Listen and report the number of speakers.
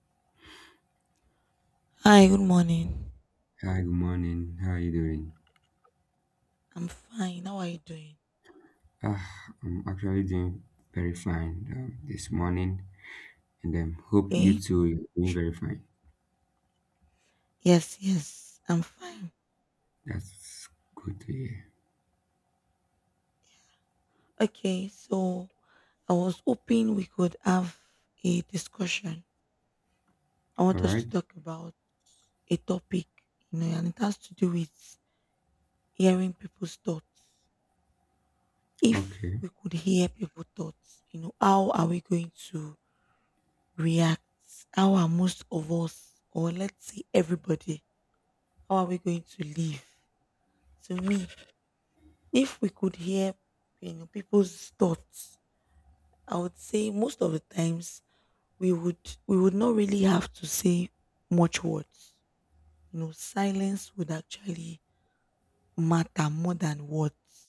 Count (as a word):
two